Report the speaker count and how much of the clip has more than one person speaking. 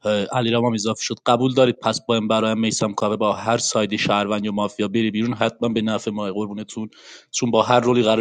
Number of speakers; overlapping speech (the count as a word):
one, no overlap